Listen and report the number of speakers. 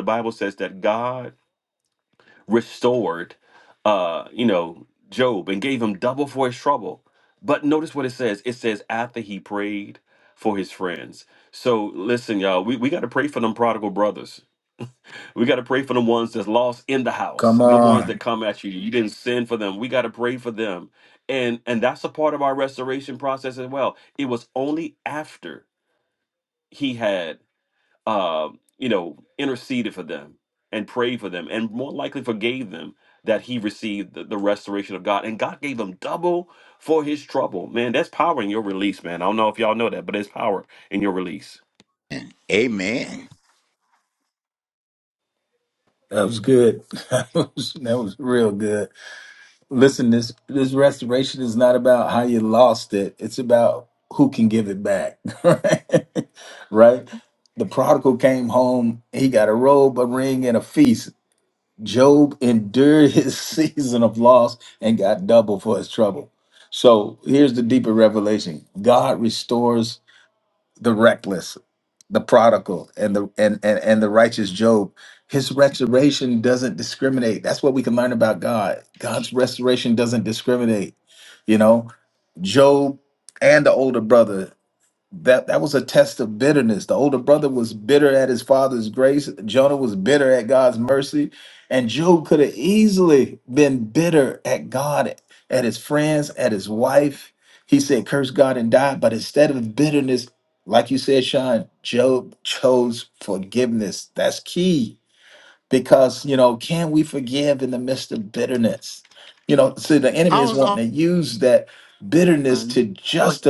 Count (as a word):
three